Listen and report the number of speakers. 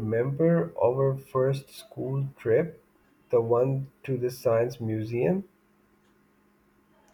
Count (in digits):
1